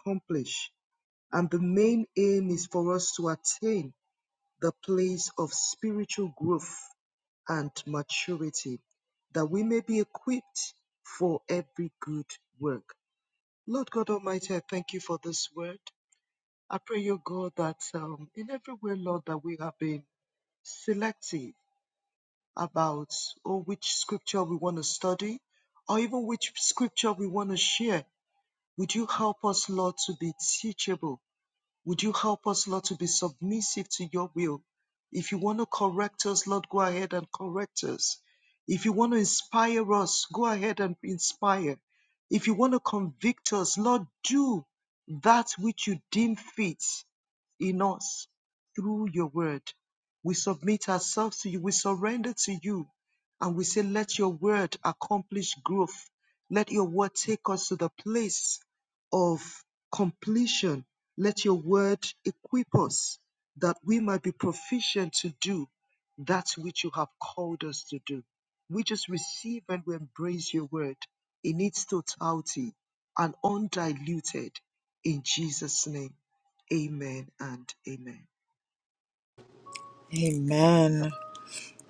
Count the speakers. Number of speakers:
2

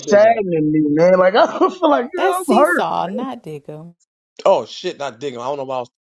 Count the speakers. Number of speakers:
3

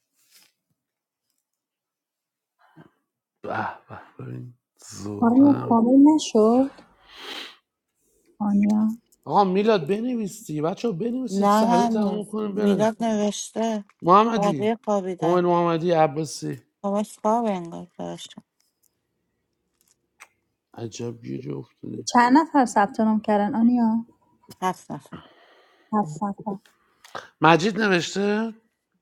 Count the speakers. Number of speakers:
3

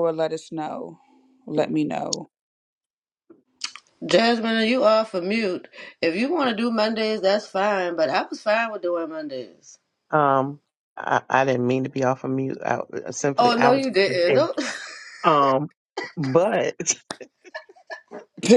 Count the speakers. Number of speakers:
3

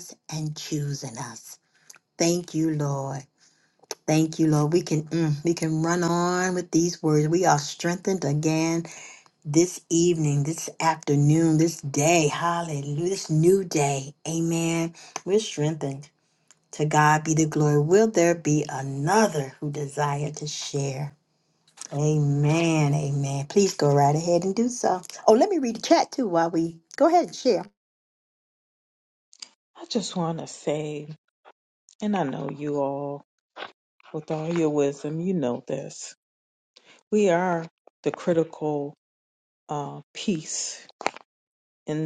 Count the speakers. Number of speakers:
2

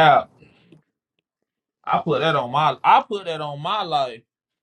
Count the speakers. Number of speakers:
1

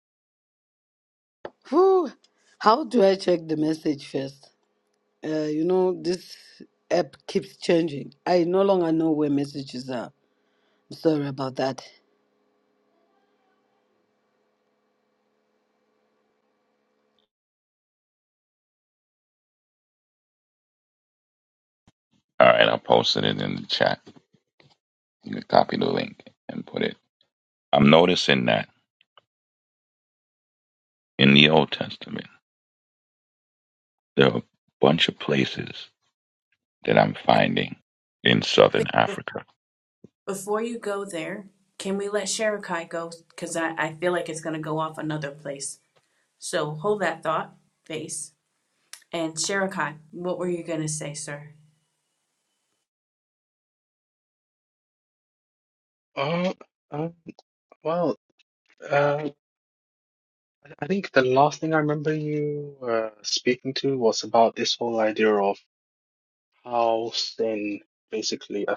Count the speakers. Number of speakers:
4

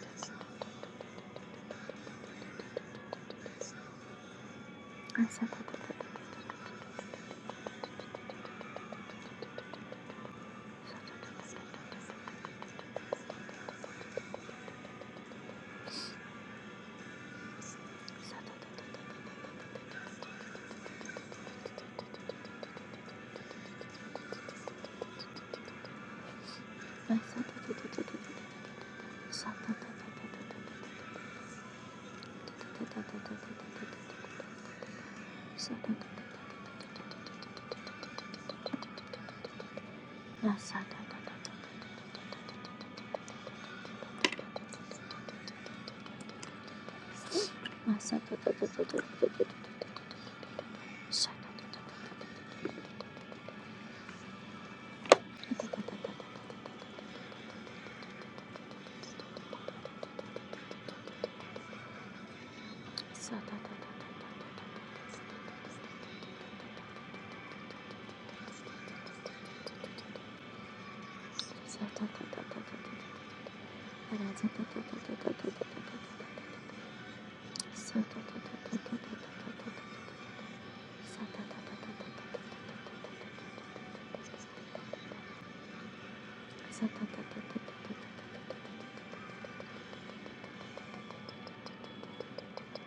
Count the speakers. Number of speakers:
0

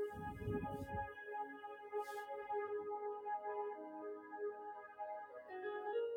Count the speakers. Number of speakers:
0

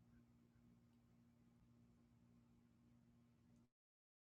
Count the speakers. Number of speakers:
0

